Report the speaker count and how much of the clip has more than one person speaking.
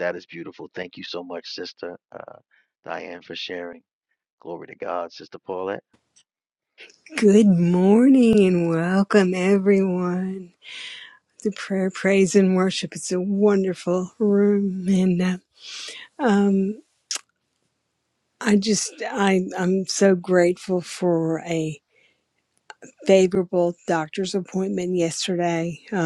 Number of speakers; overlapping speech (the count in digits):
2, no overlap